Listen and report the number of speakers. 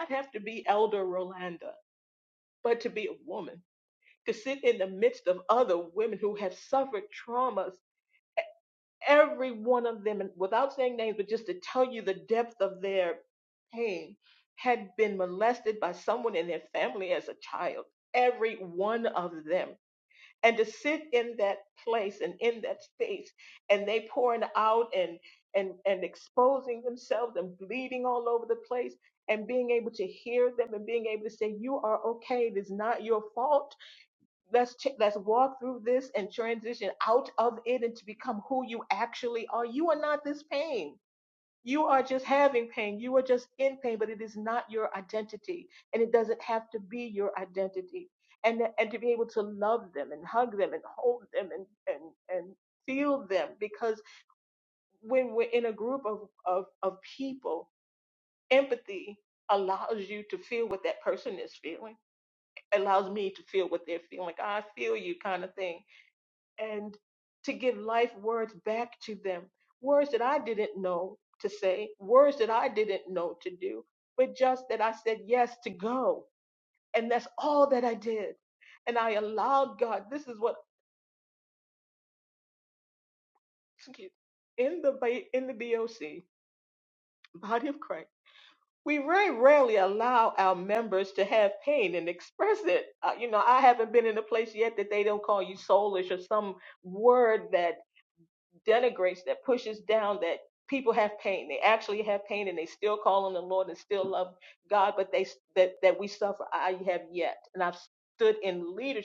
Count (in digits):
1